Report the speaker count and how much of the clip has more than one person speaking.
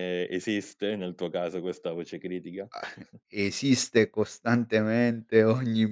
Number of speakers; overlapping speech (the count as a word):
two, no overlap